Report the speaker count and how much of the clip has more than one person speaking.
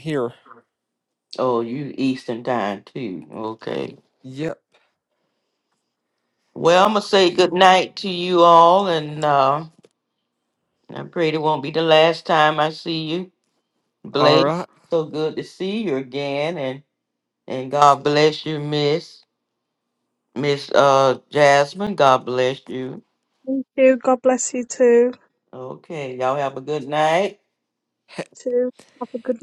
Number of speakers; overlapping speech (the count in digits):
3, about 1%